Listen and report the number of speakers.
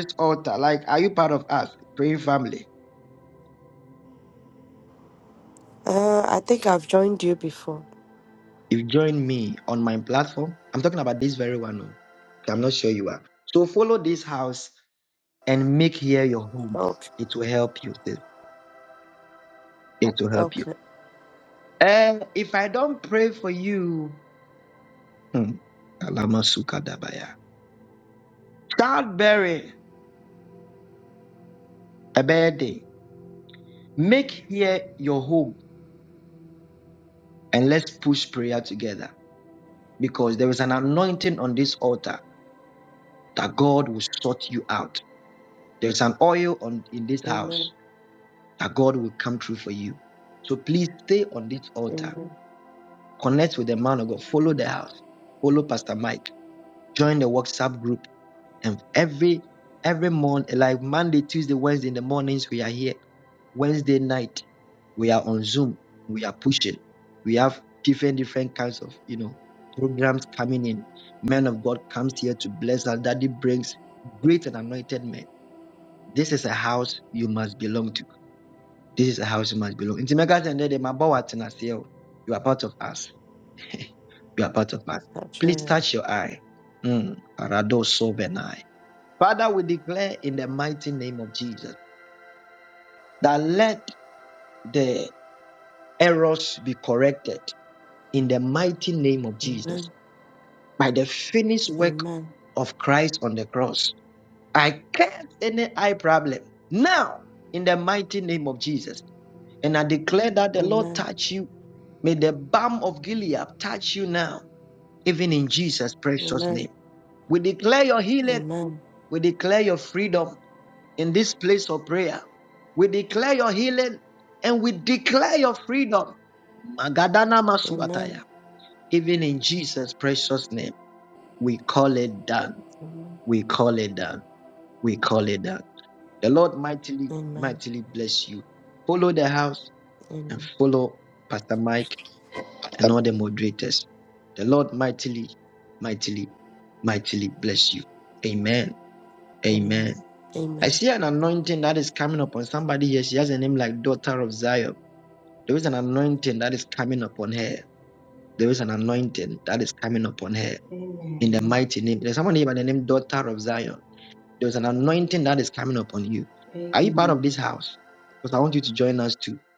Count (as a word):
three